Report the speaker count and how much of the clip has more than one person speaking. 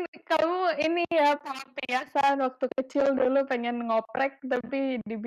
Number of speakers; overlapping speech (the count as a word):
one, no overlap